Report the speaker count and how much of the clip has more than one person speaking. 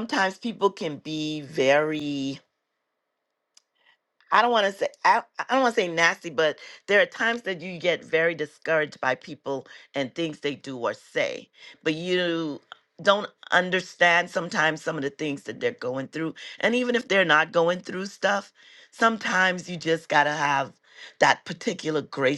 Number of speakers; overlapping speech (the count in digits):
1, no overlap